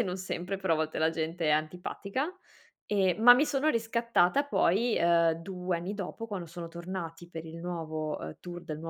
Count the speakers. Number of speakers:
1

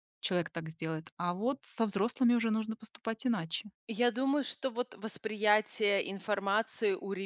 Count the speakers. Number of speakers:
2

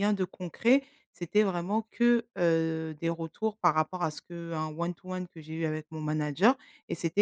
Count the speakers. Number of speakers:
1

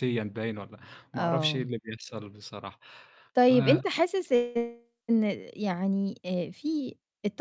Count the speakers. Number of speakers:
2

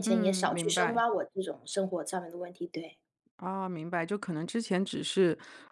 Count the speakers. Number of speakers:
2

